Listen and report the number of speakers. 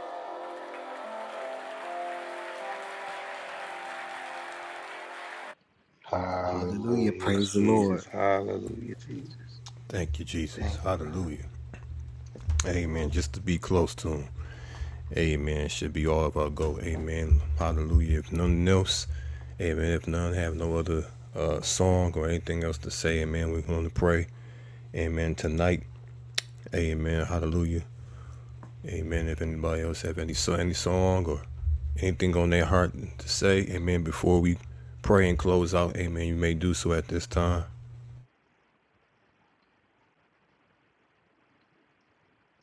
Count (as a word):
three